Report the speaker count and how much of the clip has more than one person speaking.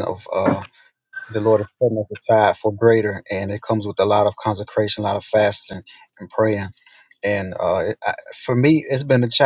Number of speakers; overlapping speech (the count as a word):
one, no overlap